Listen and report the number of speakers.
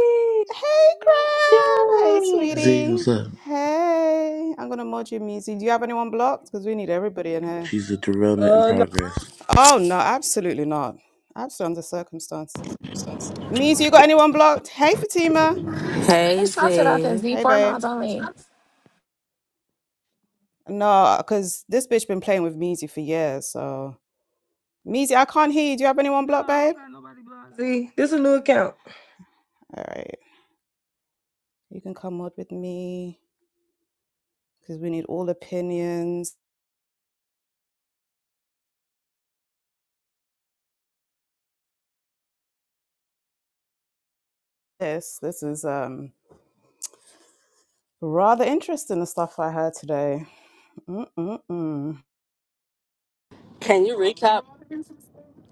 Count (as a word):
five